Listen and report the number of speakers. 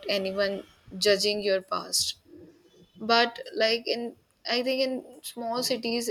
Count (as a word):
one